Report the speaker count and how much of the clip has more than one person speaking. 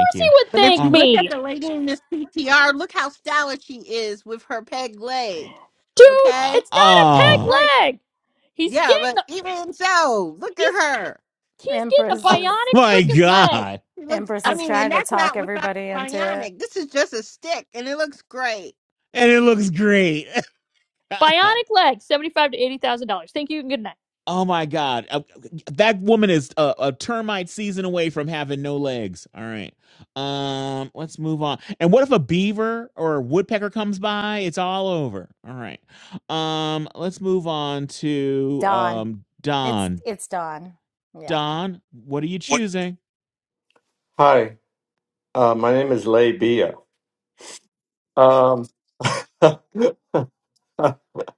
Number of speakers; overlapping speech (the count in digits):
5, about 15%